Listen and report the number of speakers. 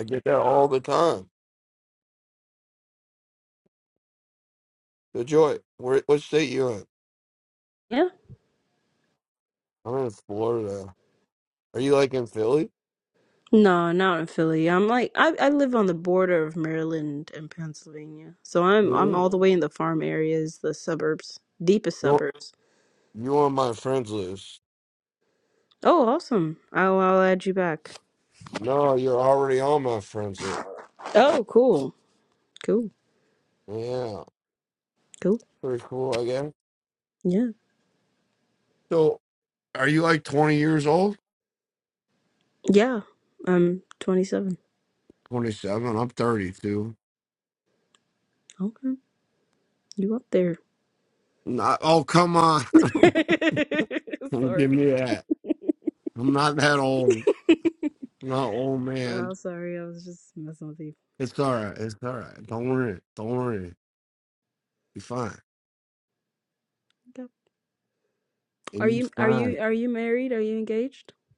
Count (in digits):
2